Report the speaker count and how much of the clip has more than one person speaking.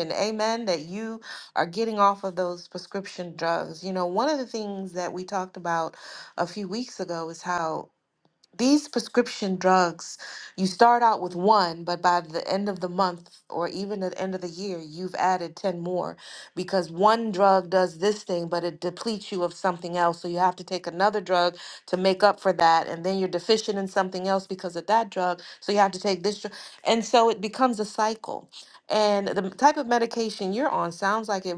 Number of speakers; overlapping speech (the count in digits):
1, no overlap